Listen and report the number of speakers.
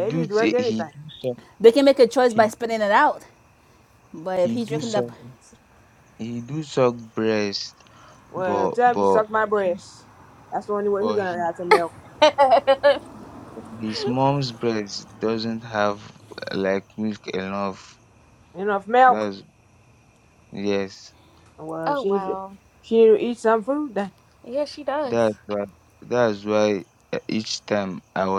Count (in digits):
4